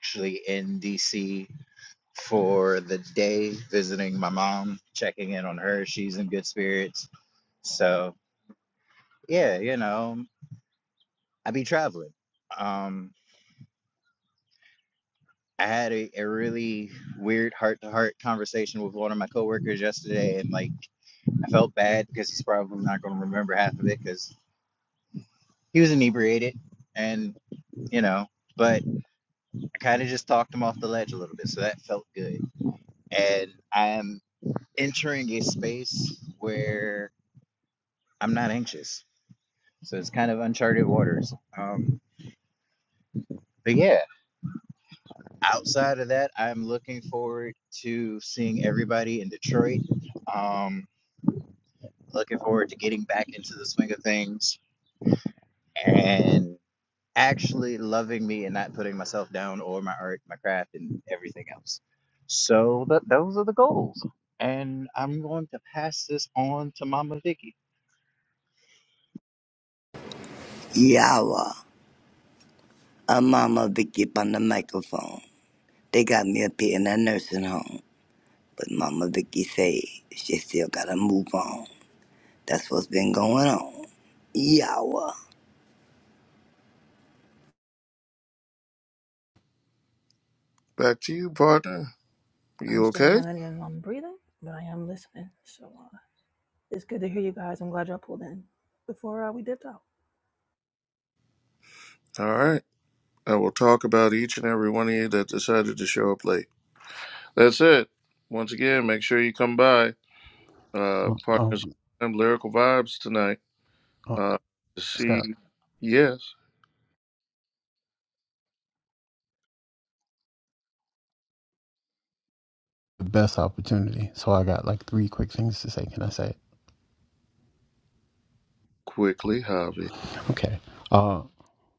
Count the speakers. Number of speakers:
five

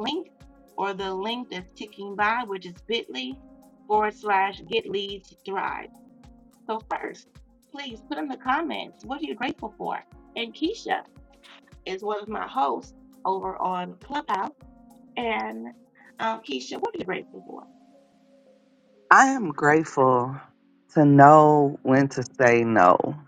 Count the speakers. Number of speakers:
two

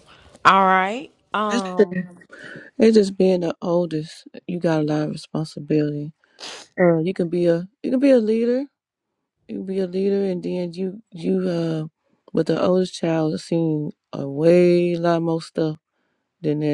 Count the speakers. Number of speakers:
two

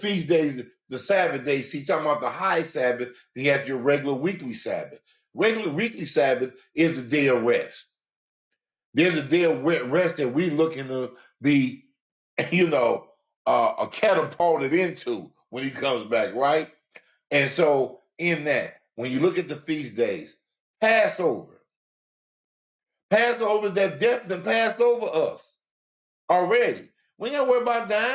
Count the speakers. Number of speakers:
one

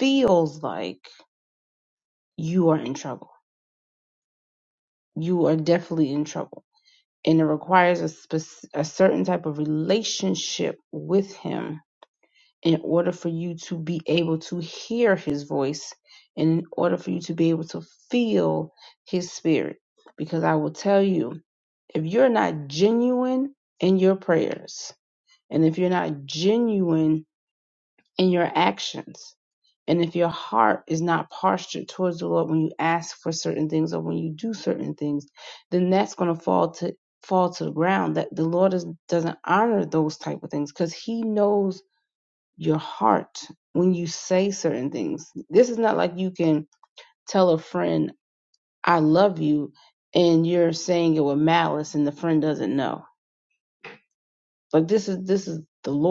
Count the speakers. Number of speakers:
one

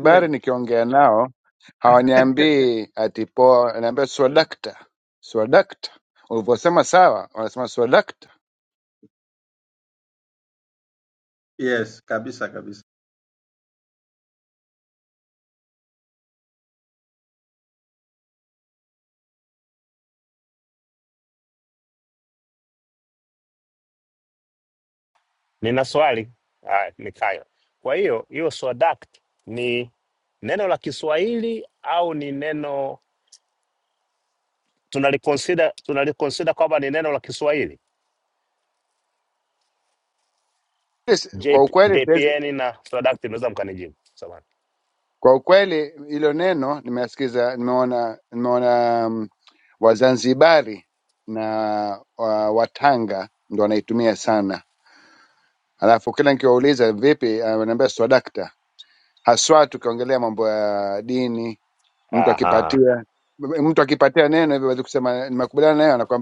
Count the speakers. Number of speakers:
three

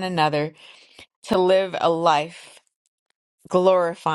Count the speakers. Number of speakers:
one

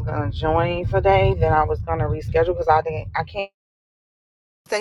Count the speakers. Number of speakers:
one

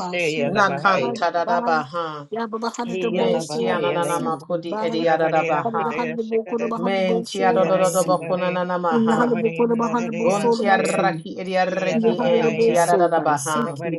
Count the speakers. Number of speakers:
three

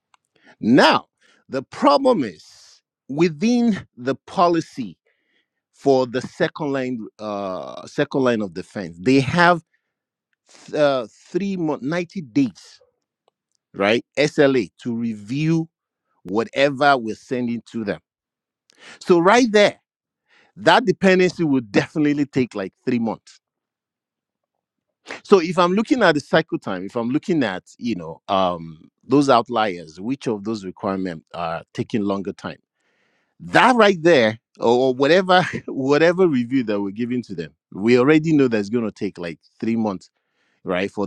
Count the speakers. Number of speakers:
one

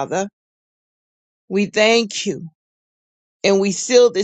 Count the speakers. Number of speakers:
one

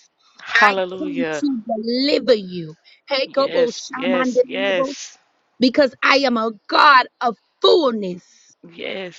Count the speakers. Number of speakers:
two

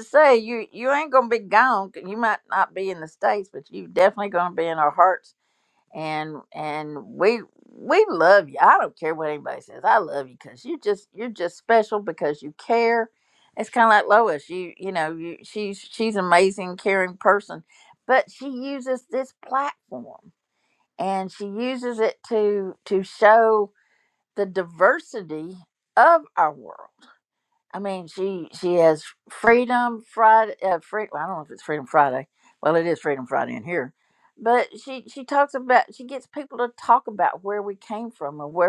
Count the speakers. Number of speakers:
one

